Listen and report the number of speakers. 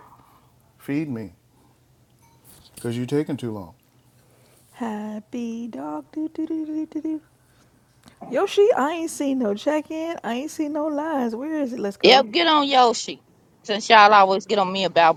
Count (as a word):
three